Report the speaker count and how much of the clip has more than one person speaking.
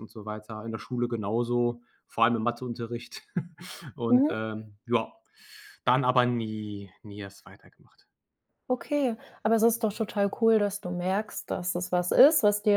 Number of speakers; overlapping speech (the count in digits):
2, about 2%